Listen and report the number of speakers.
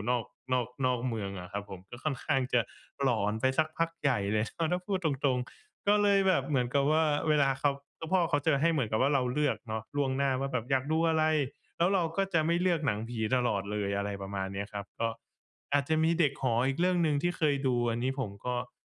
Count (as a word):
one